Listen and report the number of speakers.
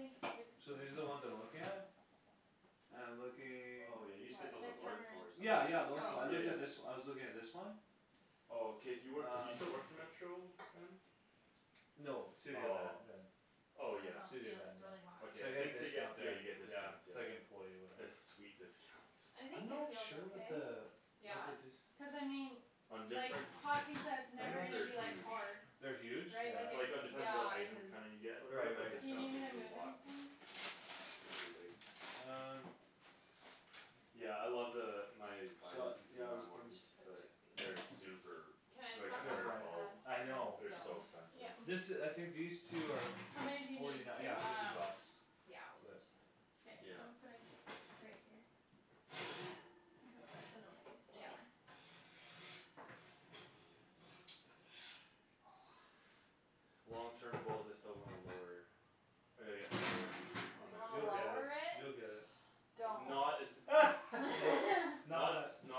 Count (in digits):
4